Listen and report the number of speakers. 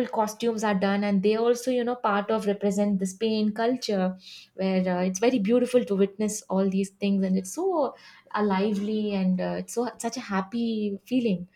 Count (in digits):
1